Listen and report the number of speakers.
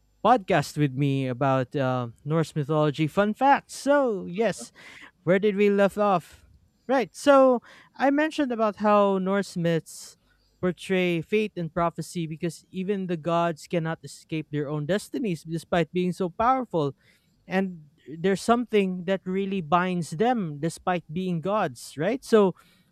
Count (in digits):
1